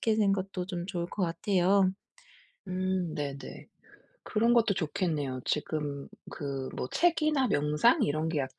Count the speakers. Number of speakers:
two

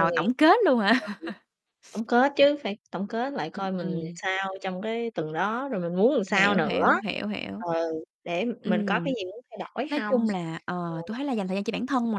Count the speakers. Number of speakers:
two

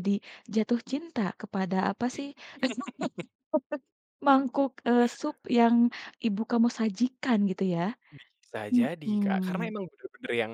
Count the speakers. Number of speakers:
two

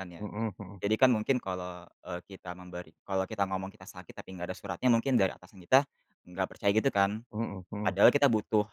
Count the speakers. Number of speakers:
two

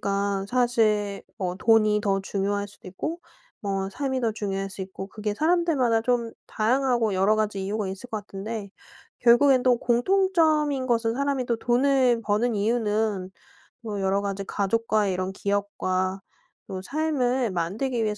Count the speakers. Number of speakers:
one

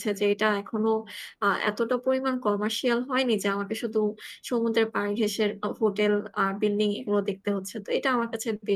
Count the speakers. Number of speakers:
one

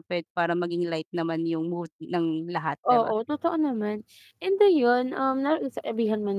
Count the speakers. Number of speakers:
two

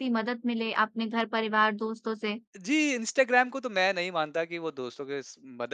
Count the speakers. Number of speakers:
two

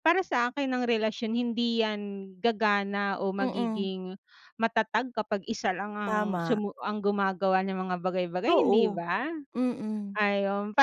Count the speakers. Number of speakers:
two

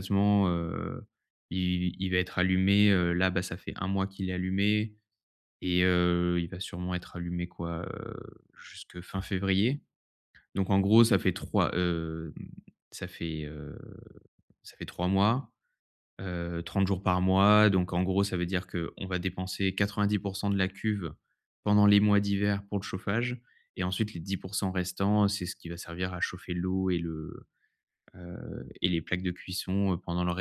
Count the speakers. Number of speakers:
one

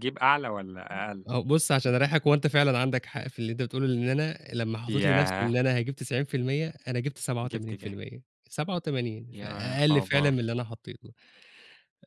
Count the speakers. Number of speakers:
two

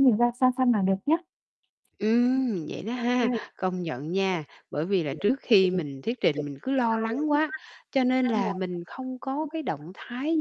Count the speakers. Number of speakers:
two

